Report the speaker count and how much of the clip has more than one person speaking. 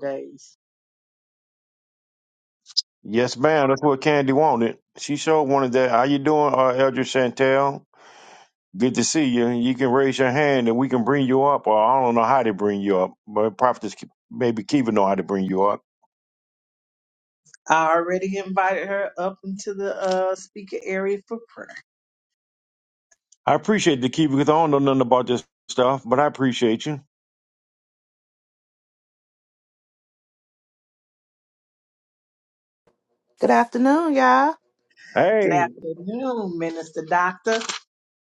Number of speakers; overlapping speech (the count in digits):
3, about 1%